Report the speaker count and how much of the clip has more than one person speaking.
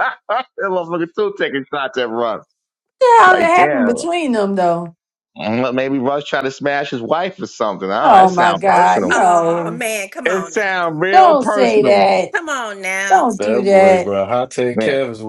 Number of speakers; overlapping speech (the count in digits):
4, about 33%